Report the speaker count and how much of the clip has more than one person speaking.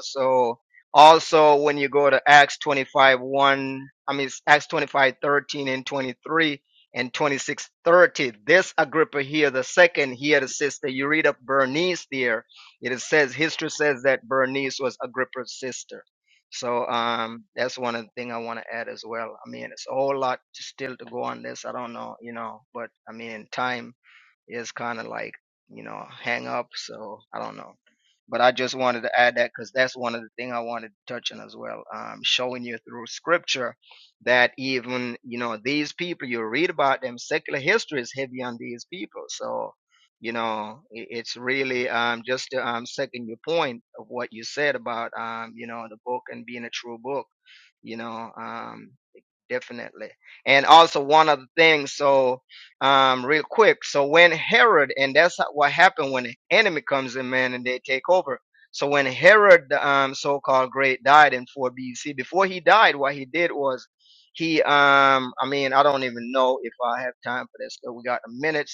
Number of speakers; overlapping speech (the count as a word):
one, no overlap